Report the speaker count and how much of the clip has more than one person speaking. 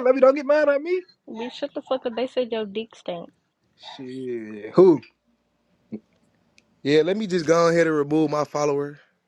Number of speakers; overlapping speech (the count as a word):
three, no overlap